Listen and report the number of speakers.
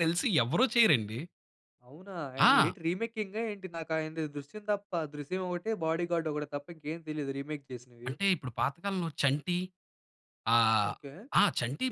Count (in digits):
2